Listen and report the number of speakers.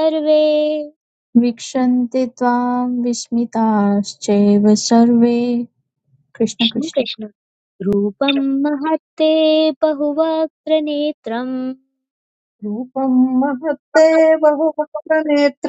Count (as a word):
three